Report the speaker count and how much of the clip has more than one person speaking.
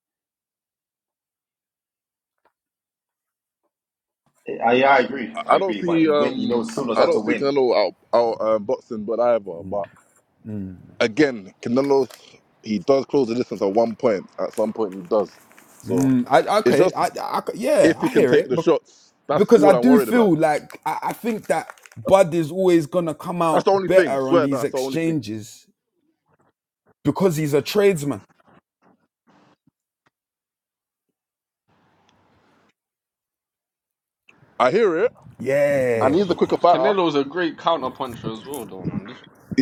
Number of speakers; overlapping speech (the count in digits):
4, about 19%